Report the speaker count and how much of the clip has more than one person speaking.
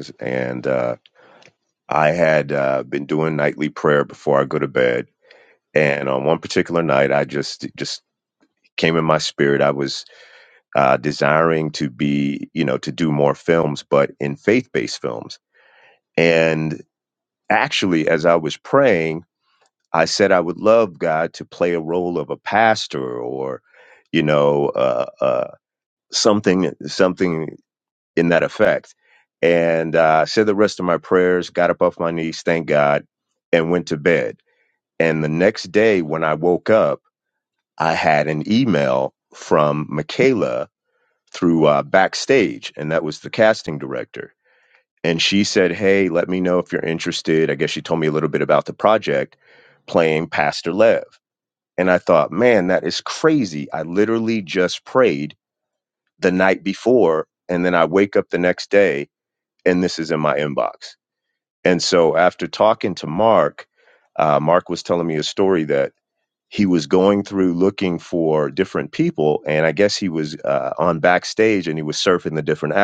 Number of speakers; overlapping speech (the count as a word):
one, no overlap